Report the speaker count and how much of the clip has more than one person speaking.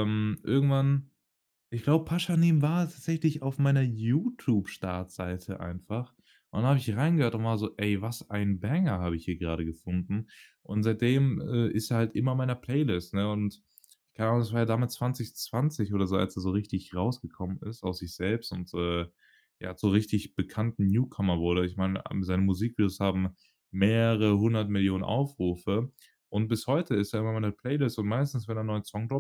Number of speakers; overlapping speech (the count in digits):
1, no overlap